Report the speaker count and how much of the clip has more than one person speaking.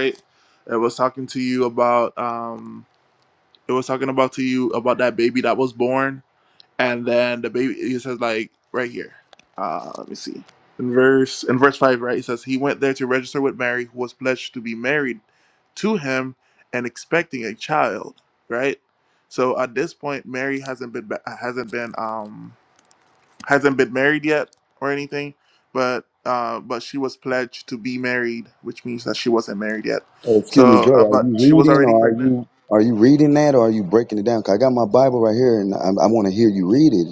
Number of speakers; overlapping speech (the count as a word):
two, about 5%